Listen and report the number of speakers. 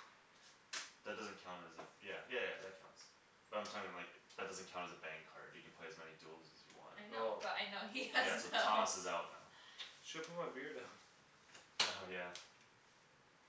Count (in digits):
3